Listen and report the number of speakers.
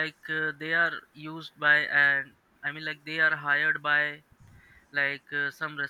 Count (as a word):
one